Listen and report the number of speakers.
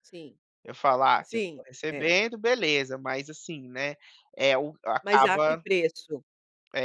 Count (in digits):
2